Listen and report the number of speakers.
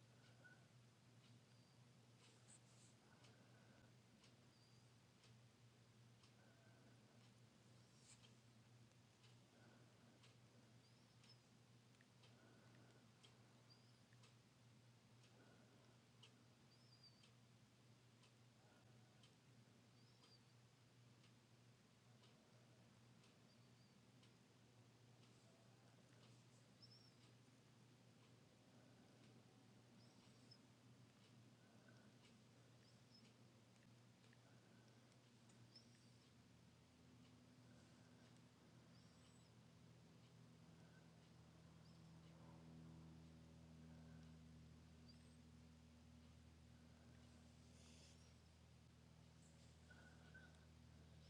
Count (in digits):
0